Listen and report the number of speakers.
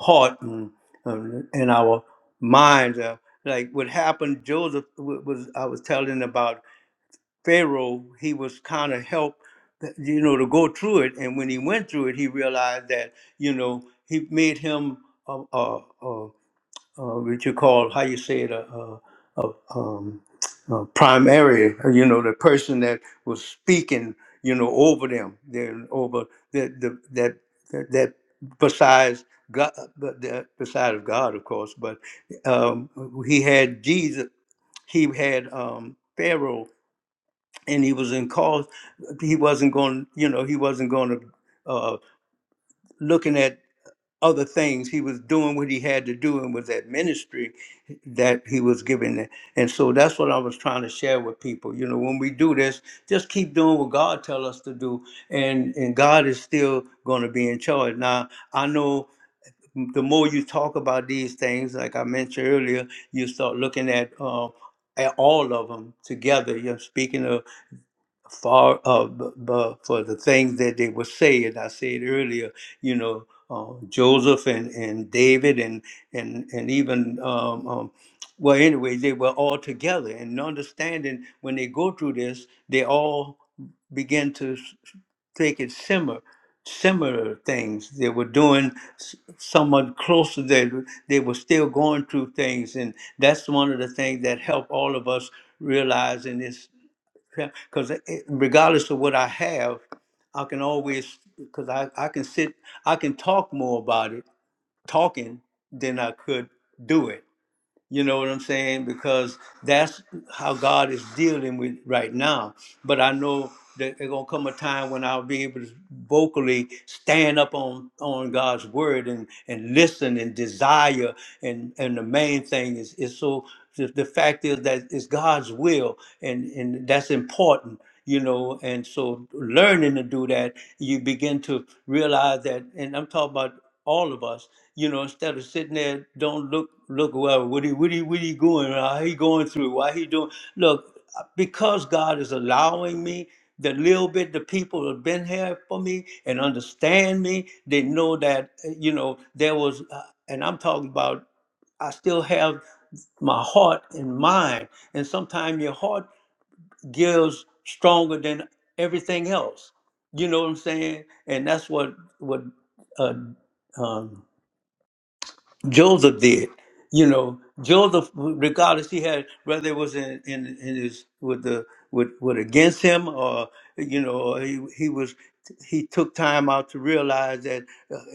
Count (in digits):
1